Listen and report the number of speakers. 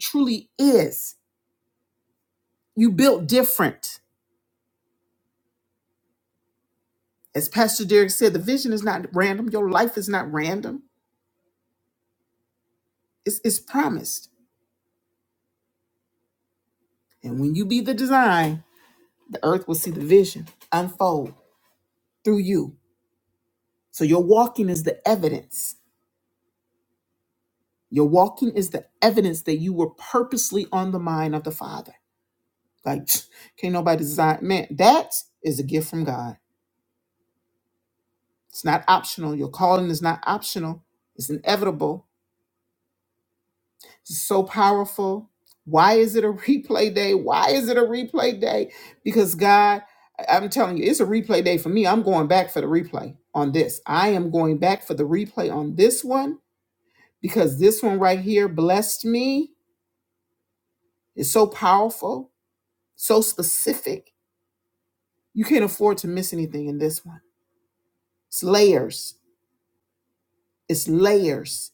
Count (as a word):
one